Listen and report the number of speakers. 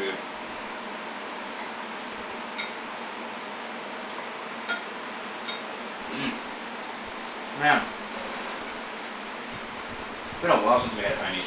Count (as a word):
one